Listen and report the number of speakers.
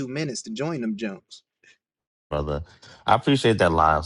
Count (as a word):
two